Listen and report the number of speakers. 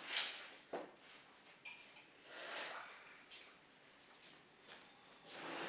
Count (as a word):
zero